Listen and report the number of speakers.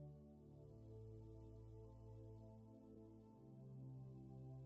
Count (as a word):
zero